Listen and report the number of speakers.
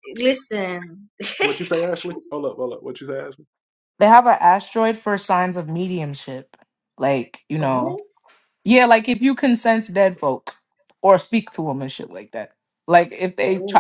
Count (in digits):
3